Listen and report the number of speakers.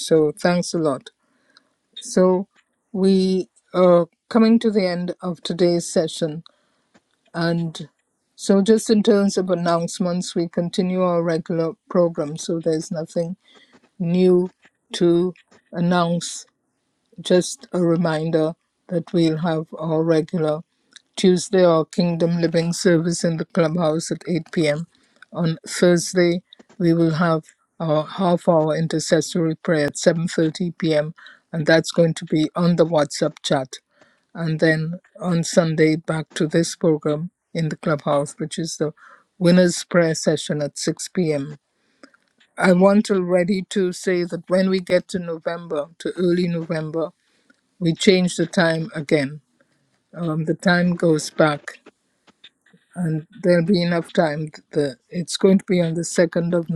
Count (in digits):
1